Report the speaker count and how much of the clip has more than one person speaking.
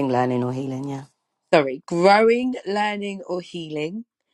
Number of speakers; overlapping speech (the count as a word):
two, no overlap